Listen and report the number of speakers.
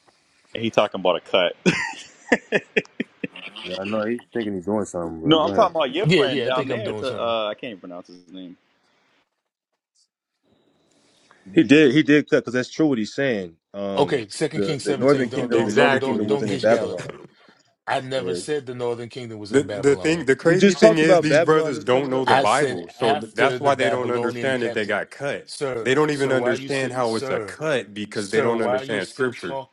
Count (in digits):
4